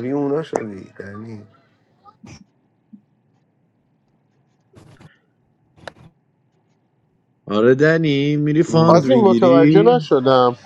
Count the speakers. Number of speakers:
3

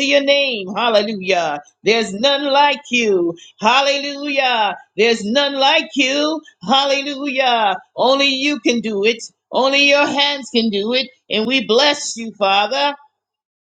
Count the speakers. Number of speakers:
1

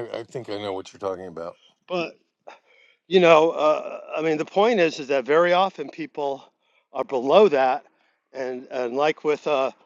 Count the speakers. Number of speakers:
2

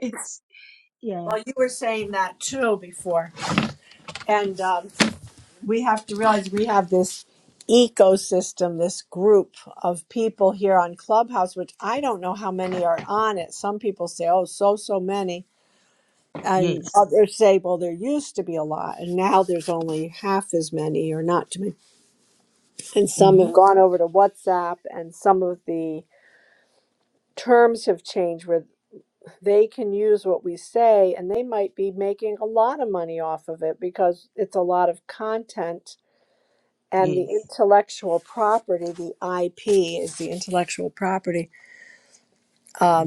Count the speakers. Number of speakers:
2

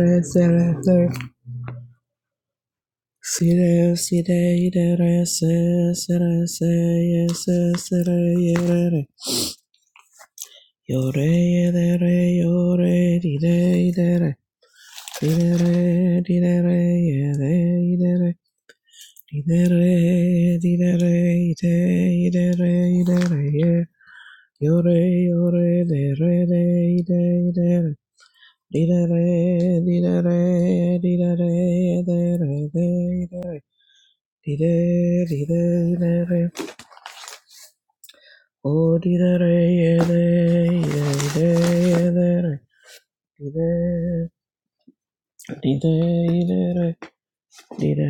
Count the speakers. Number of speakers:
1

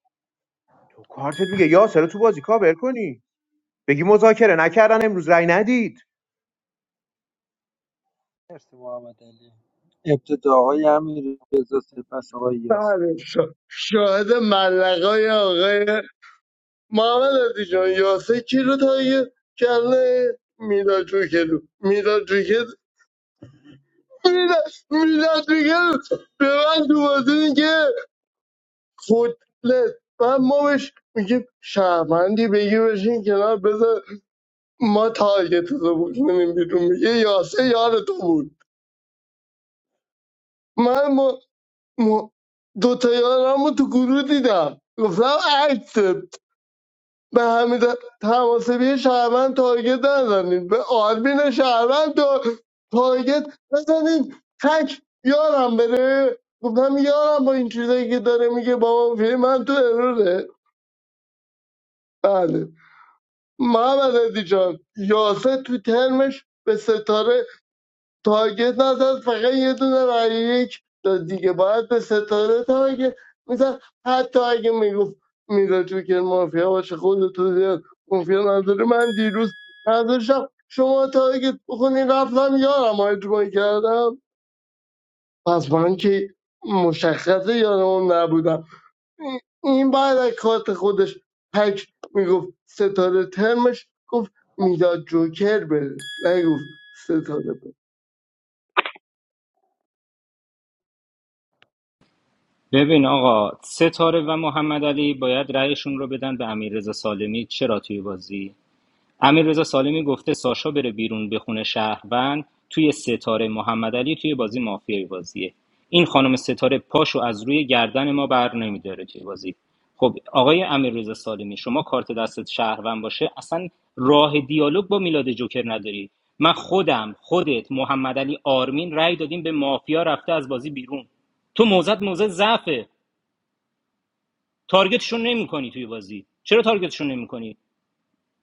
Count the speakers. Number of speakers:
4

